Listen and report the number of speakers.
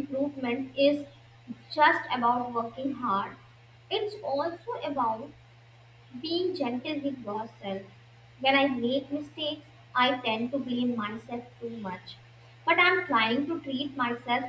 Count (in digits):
1